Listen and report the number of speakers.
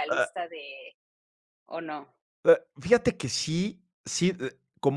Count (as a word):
two